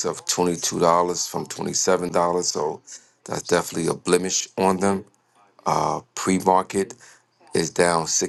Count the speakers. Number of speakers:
1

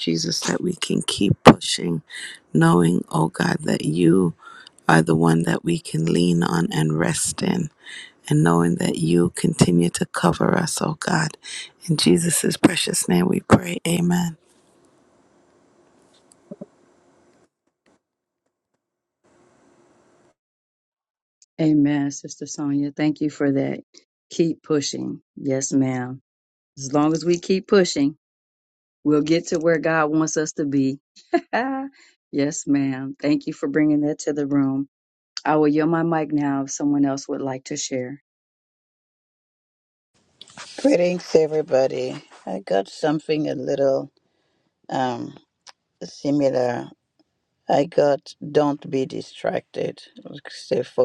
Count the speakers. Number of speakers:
3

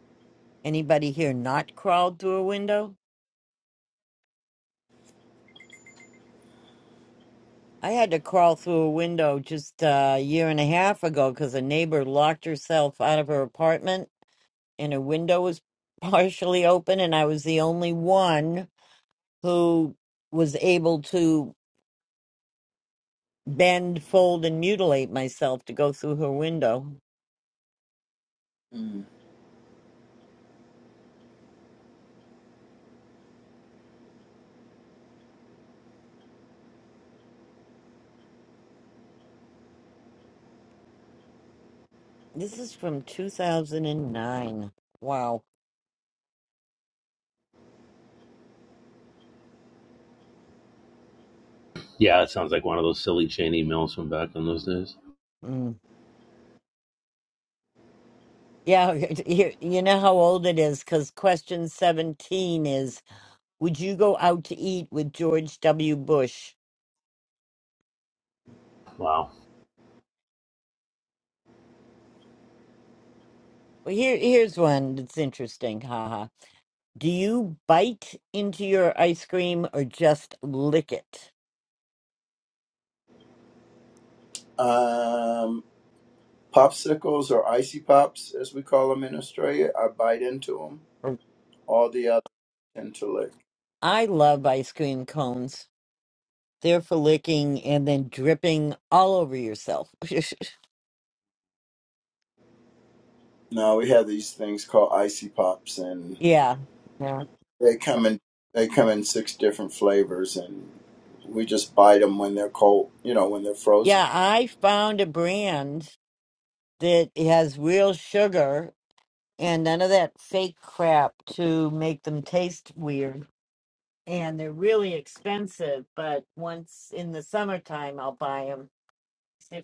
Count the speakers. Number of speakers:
3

